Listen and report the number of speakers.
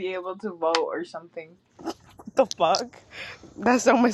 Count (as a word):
two